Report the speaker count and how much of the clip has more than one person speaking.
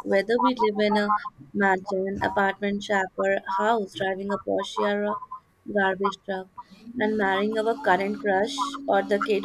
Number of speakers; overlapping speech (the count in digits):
1, no overlap